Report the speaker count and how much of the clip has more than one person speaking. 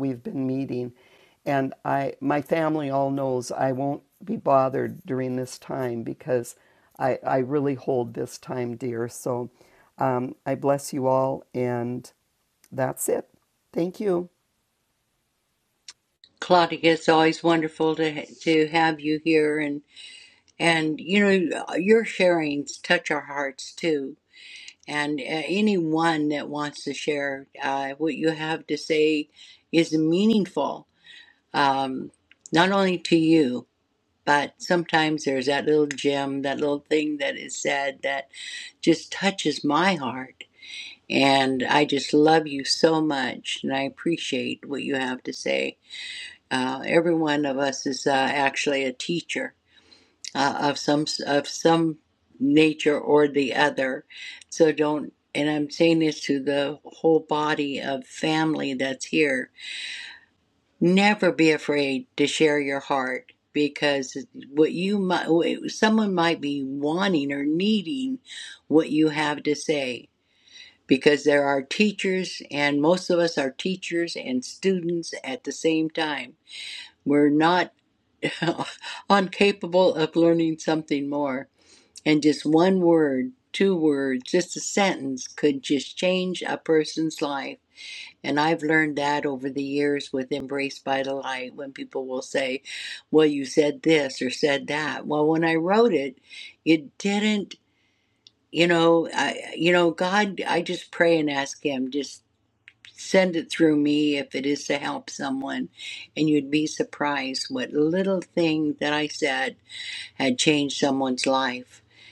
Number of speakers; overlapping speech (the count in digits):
2, no overlap